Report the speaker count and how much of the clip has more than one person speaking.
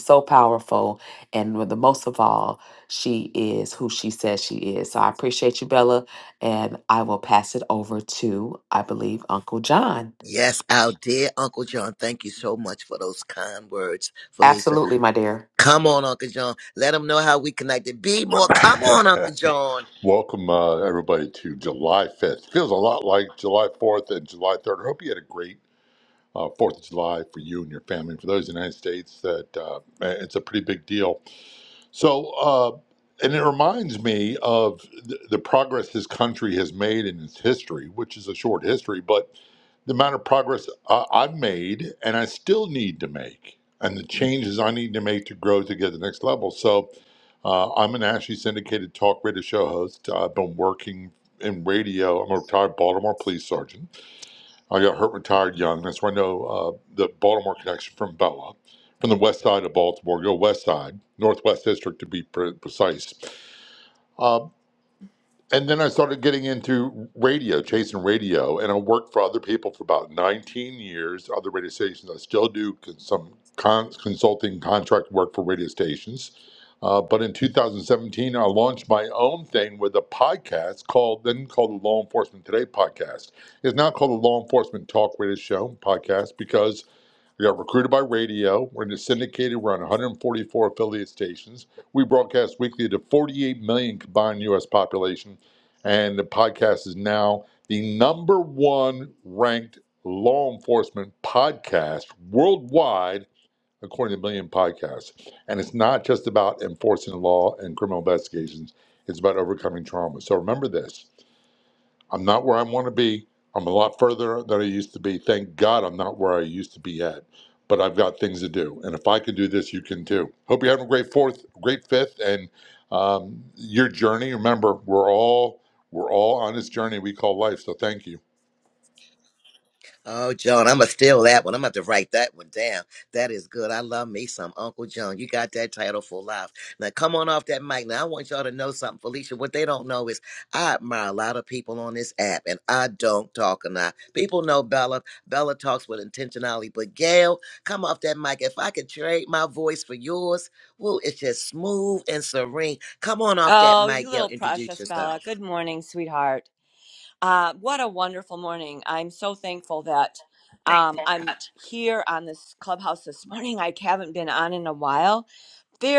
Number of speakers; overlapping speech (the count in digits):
4, about 1%